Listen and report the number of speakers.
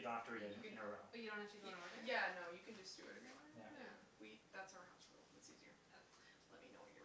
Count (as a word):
three